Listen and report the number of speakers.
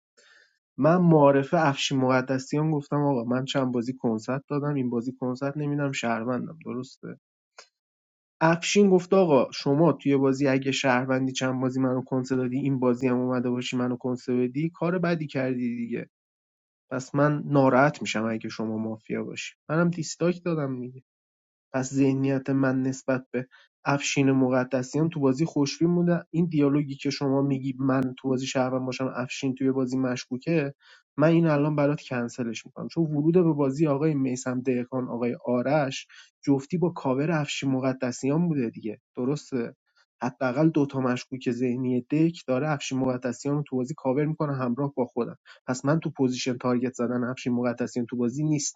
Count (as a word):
one